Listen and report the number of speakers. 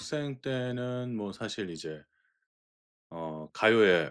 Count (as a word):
one